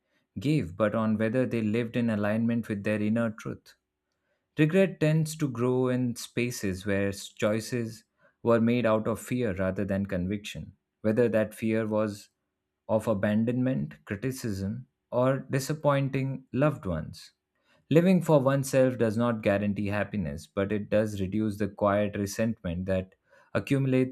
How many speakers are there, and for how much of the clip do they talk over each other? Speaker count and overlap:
one, no overlap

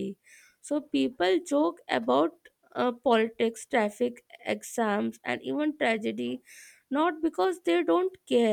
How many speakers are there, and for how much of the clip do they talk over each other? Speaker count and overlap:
one, no overlap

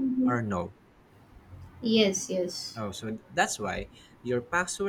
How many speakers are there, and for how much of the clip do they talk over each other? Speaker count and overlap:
two, about 8%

